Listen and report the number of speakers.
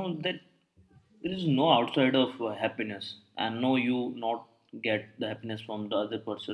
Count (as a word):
one